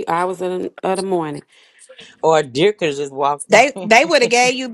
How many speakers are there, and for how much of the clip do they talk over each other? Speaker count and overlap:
three, about 2%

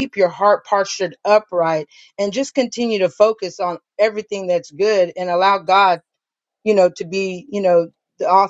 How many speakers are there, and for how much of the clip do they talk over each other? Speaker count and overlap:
one, no overlap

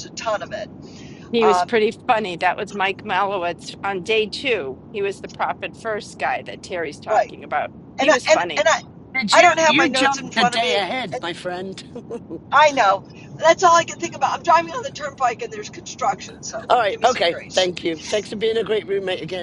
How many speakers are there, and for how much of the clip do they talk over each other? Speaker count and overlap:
three, about 24%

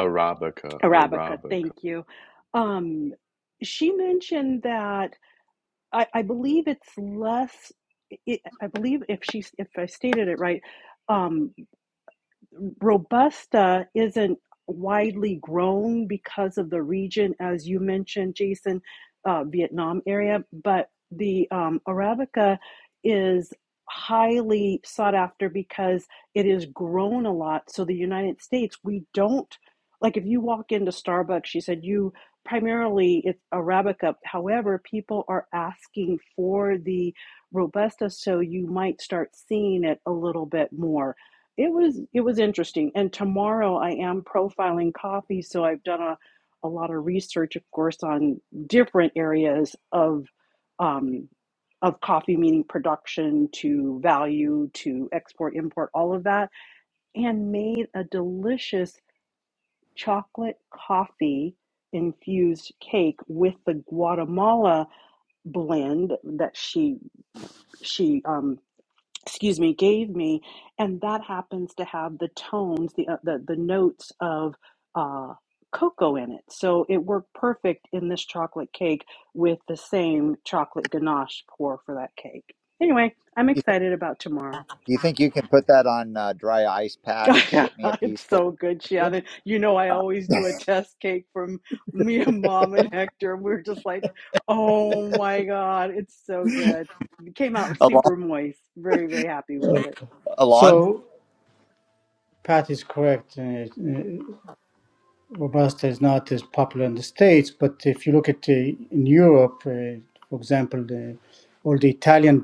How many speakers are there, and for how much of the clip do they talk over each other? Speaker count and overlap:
four, about 3%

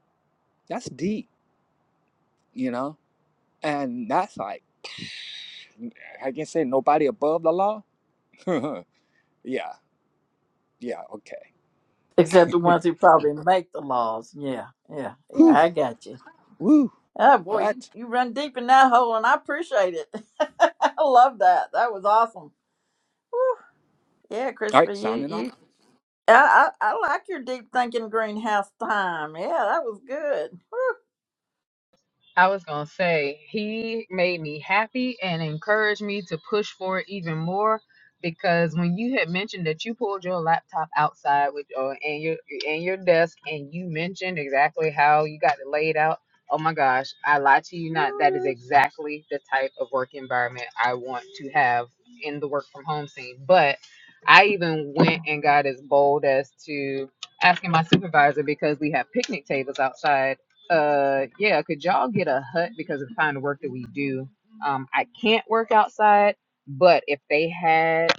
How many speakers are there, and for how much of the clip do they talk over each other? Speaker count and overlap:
three, about 2%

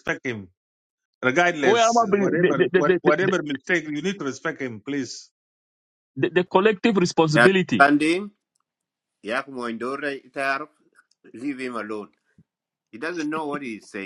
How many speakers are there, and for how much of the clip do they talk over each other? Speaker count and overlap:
three, about 16%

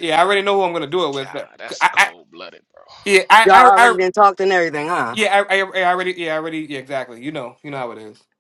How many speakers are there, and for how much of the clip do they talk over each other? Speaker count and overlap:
three, about 14%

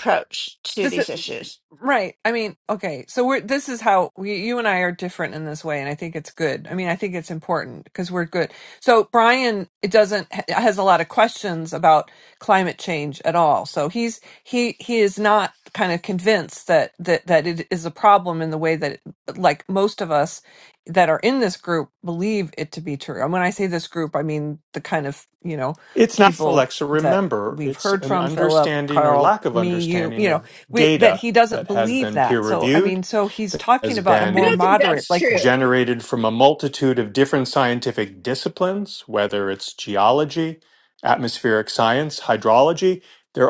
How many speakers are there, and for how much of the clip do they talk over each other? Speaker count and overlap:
three, about 19%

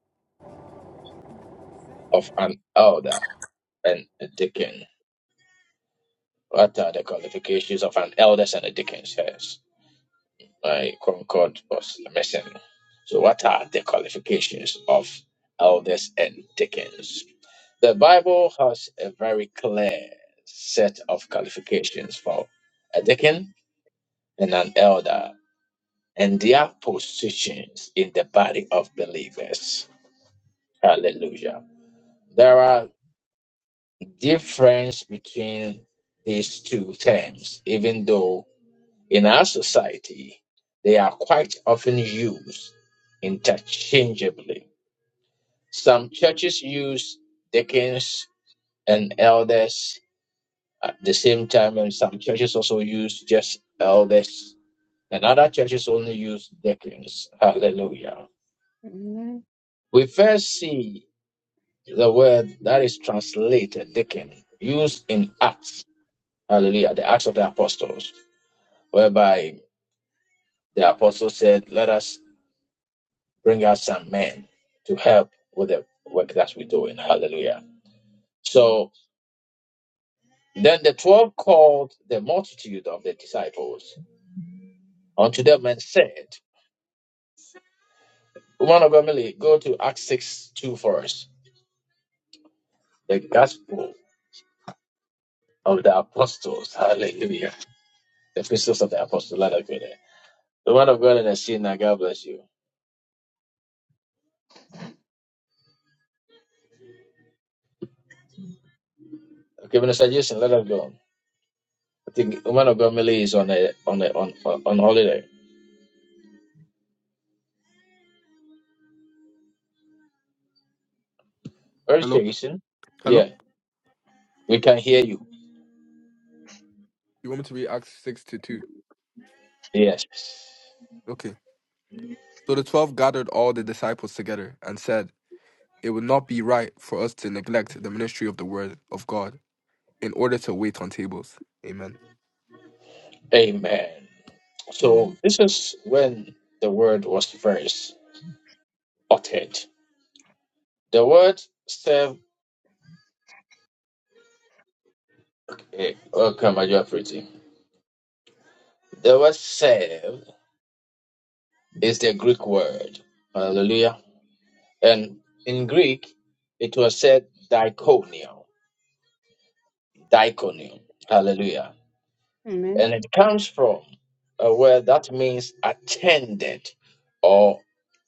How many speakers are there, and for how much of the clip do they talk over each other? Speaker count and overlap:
three, about 1%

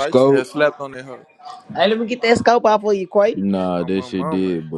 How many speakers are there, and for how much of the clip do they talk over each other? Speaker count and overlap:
three, about 27%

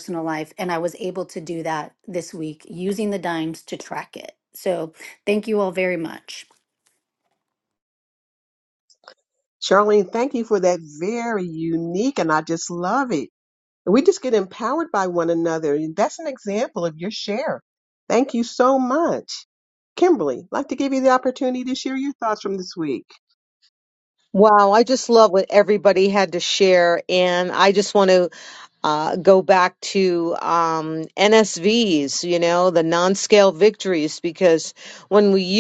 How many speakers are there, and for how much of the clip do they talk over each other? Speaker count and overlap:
three, no overlap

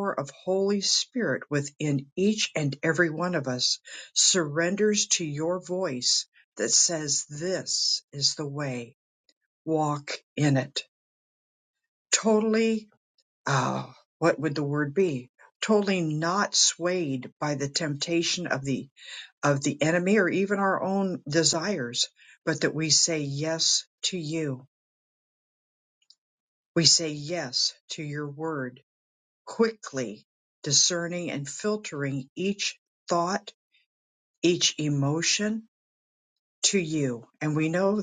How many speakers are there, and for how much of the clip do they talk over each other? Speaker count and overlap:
one, no overlap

